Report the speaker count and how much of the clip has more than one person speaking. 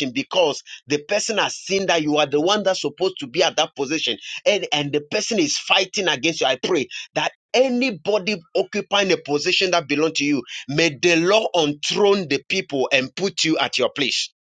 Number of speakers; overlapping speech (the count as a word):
one, no overlap